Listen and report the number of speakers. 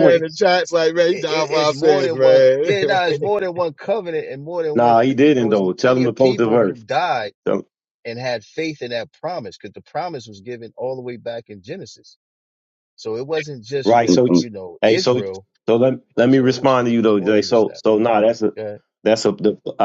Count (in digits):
3